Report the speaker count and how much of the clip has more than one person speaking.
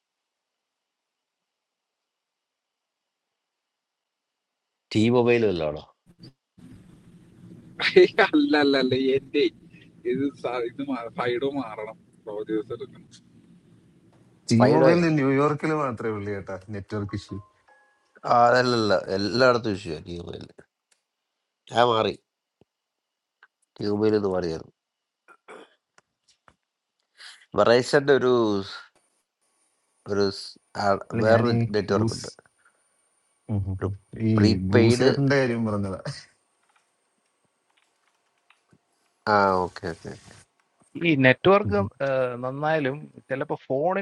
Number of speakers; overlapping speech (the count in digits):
4, about 6%